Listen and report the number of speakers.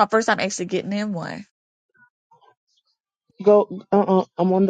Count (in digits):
2